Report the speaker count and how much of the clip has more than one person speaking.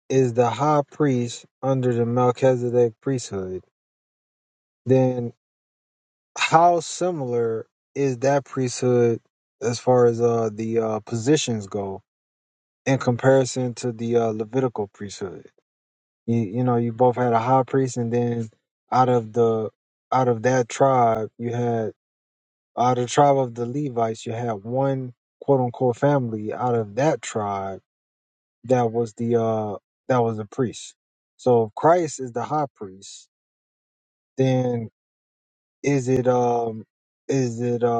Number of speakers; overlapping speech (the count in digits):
1, no overlap